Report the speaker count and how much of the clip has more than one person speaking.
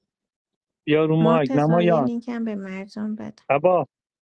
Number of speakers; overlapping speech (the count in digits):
2, about 22%